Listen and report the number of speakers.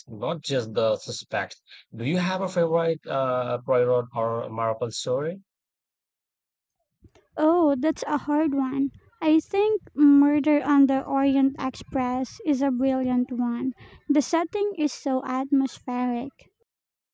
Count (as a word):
two